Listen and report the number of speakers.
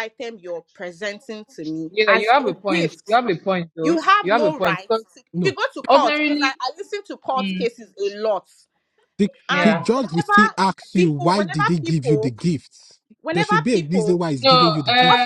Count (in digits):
3